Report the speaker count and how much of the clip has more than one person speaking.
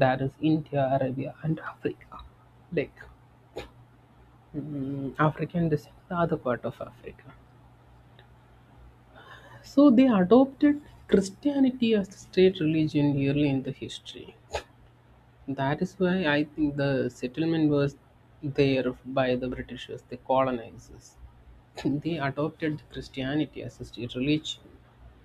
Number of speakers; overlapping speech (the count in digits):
1, no overlap